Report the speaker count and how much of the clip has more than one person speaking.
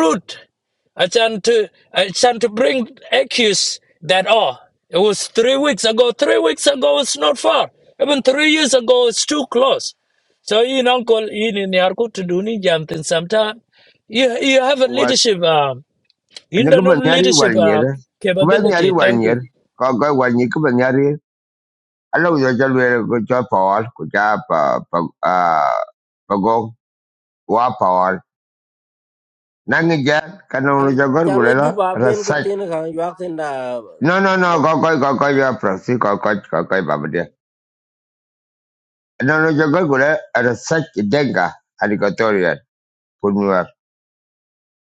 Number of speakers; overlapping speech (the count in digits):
3, about 9%